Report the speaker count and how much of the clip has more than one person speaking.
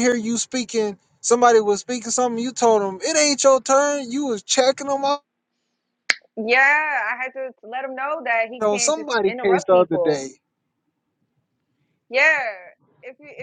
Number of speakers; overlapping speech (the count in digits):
2, about 12%